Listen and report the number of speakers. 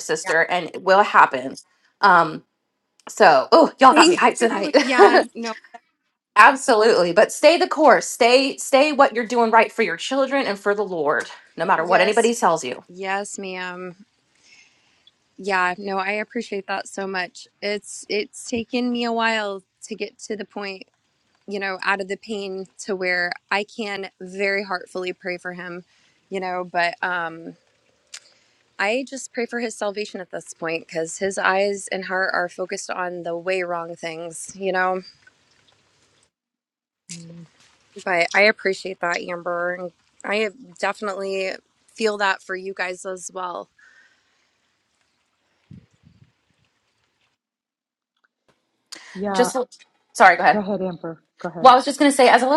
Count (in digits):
3